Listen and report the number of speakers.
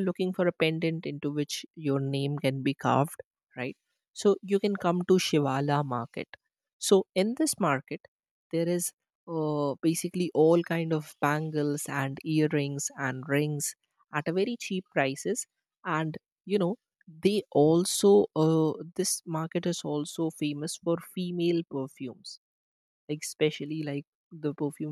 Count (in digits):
1